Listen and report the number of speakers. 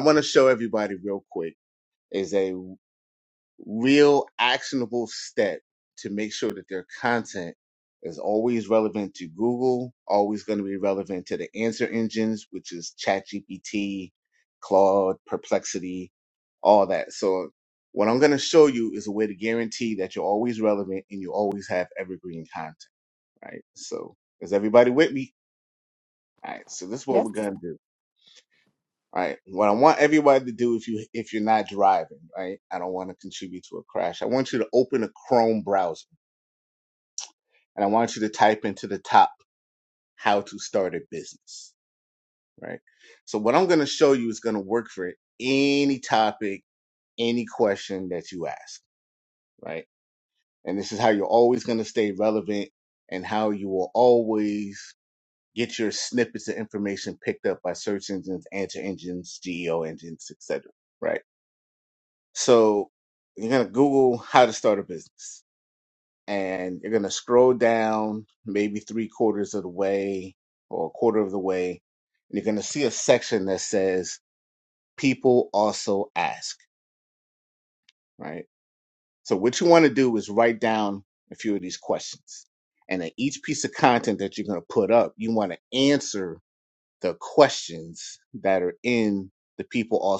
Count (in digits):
1